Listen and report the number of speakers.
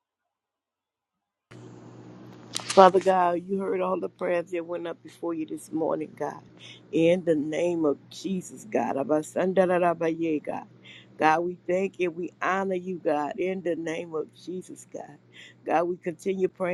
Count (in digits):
1